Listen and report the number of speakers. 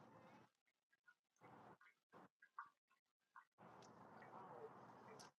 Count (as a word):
zero